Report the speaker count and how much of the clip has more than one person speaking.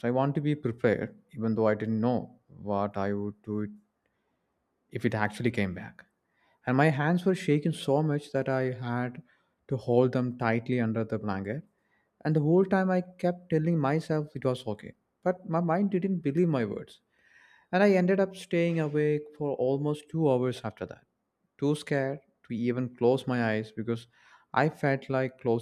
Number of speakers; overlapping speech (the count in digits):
1, no overlap